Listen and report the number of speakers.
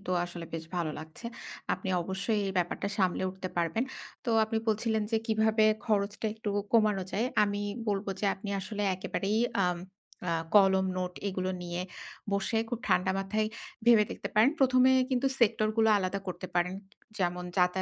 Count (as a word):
one